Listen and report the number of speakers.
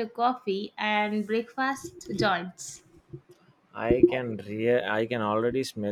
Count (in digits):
2